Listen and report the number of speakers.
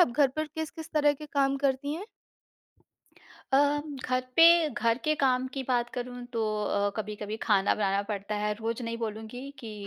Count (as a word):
two